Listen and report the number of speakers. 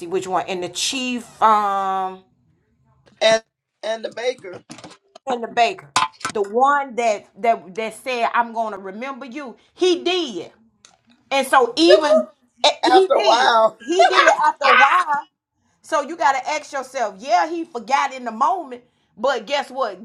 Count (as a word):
two